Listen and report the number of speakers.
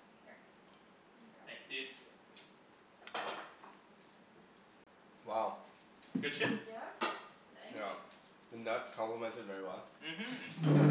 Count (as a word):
three